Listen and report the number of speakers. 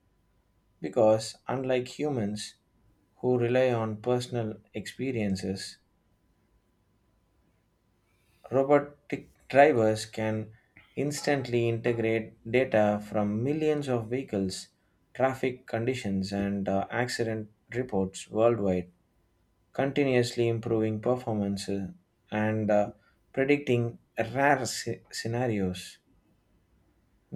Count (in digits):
1